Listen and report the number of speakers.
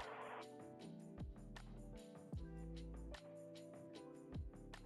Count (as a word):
zero